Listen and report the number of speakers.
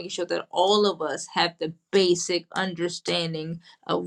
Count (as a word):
one